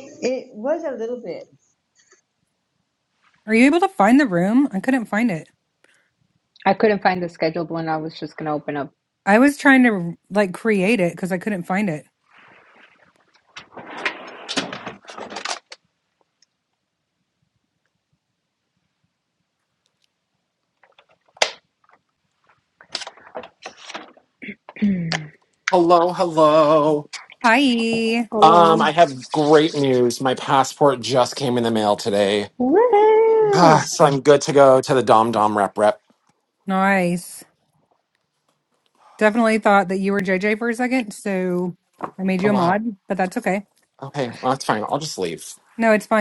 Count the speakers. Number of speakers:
four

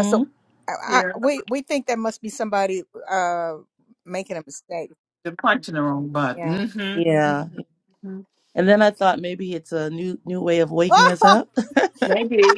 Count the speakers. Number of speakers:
three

